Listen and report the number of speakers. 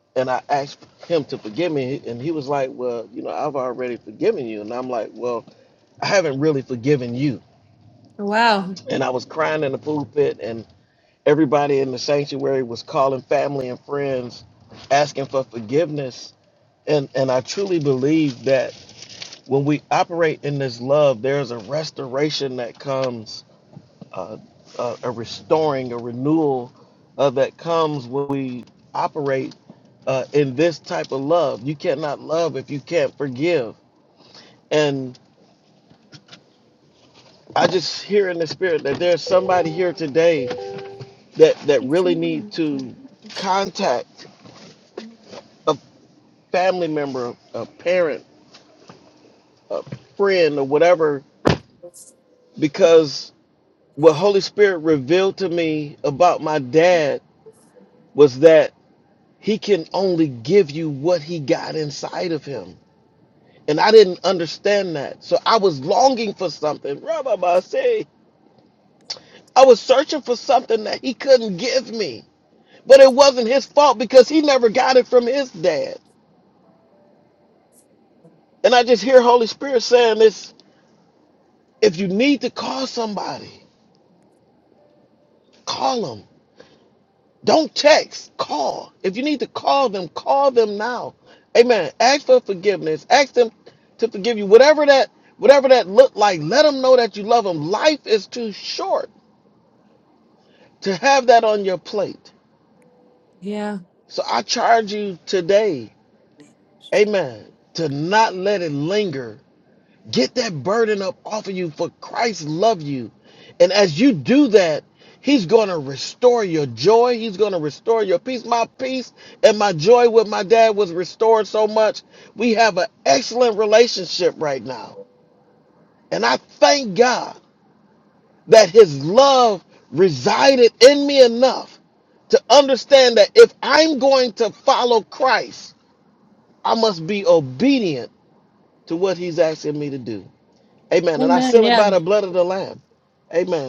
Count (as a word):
two